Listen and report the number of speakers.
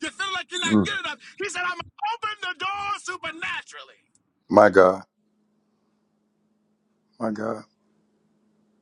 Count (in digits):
2